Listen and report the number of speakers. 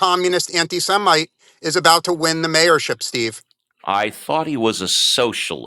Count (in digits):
2